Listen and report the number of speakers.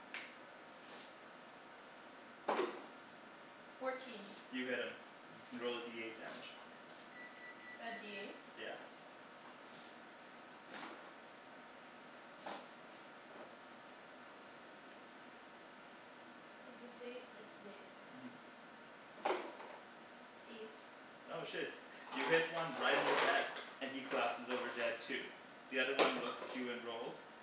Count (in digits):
2